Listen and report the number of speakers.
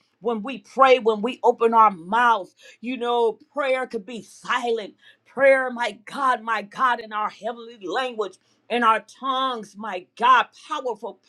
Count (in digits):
1